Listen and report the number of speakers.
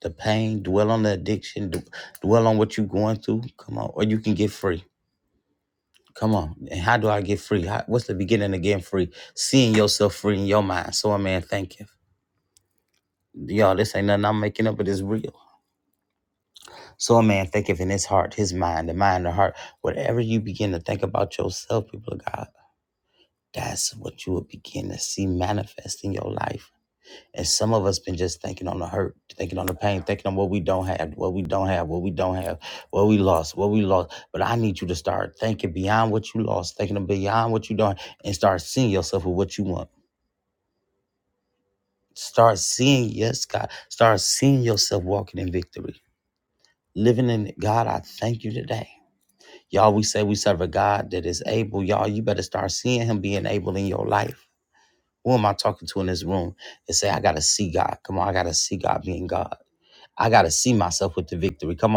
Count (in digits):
1